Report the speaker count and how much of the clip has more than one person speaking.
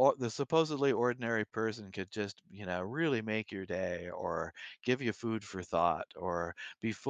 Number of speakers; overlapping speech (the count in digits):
1, no overlap